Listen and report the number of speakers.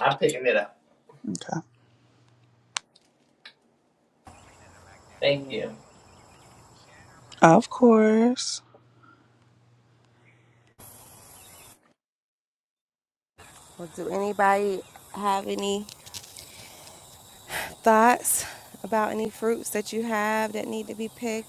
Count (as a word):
three